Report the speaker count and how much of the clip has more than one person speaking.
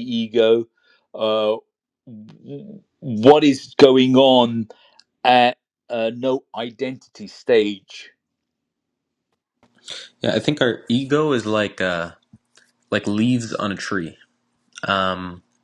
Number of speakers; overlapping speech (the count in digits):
2, no overlap